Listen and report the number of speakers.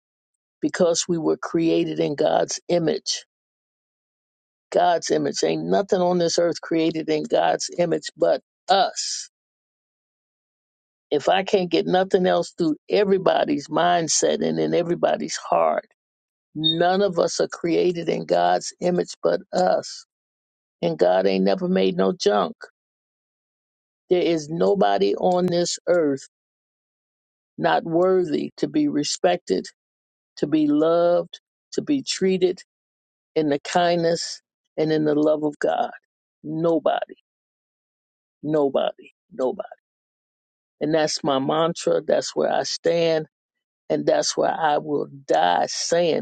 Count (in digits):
1